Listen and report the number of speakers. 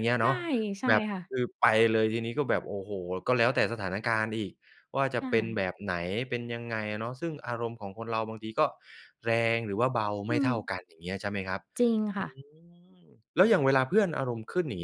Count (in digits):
2